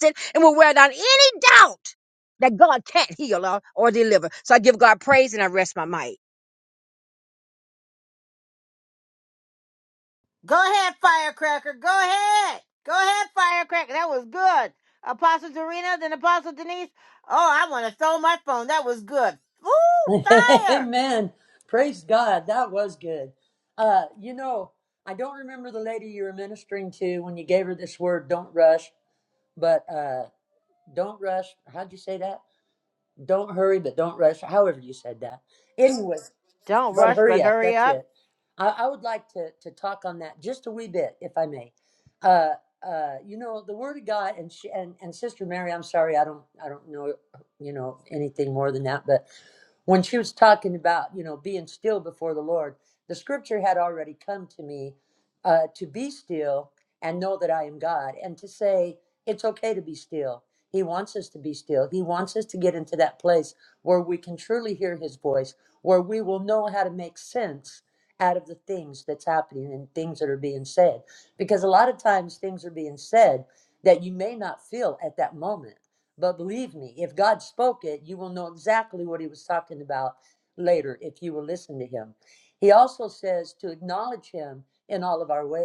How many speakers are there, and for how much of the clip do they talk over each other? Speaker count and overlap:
three, about 2%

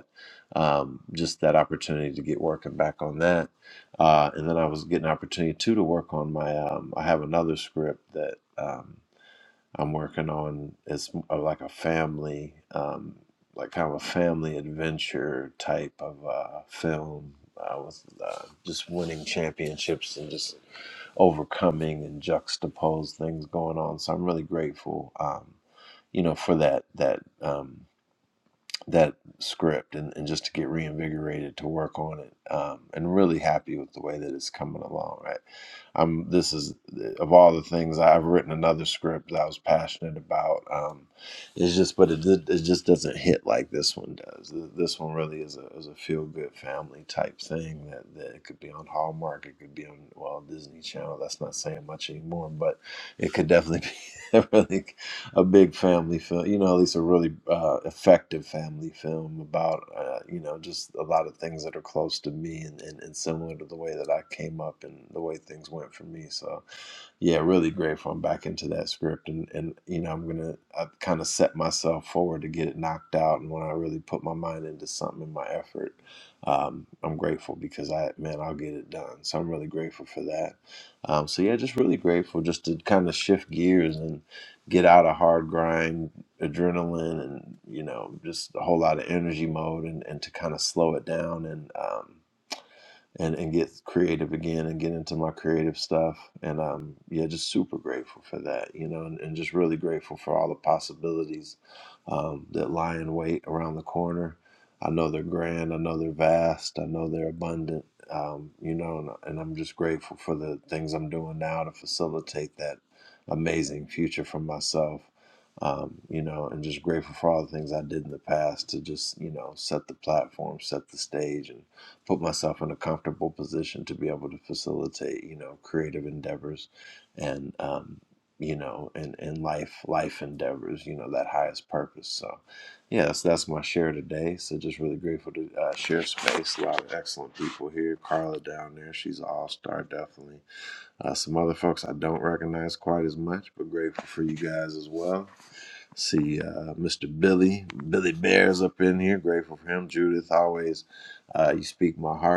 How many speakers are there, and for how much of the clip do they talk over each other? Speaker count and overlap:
one, no overlap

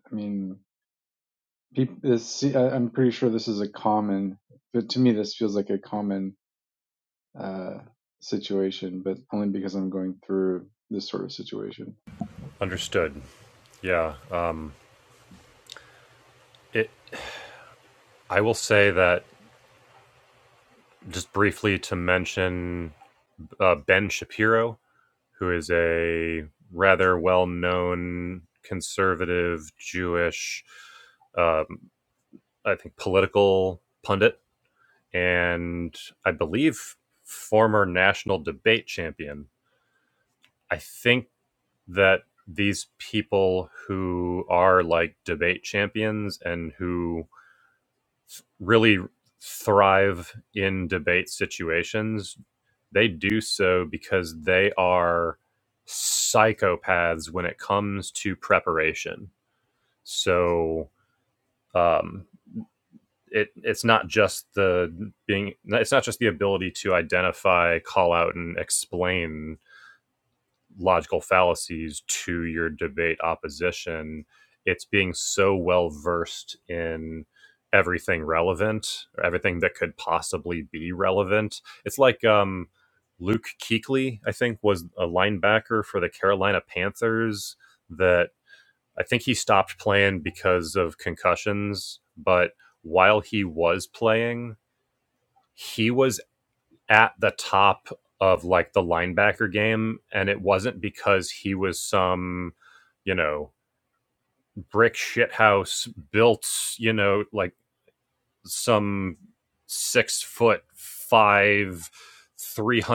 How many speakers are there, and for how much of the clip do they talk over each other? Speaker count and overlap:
two, no overlap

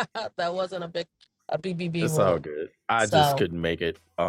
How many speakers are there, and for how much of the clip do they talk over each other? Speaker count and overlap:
two, about 16%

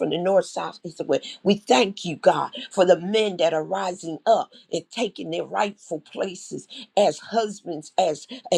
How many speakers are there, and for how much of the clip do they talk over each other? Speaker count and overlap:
one, no overlap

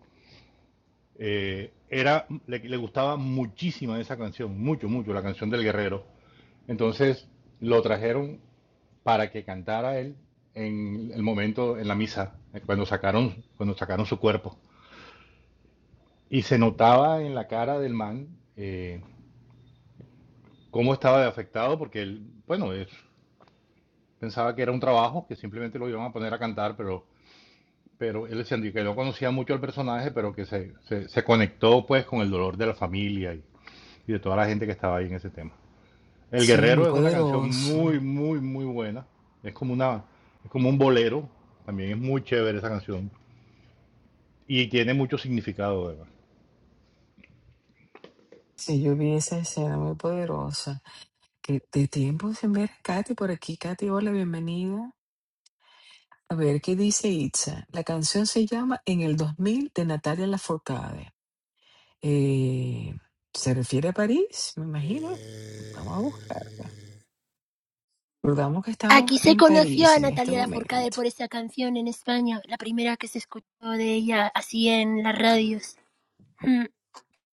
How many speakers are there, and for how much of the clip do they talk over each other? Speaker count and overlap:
three, about 5%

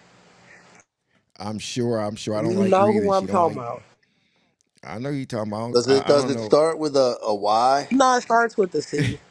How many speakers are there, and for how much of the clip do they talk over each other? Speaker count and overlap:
three, about 22%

